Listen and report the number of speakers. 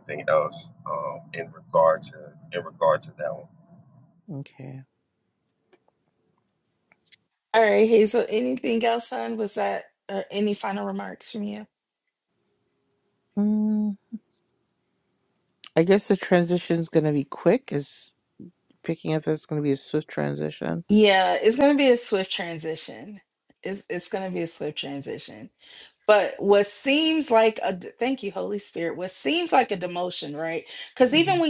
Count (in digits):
3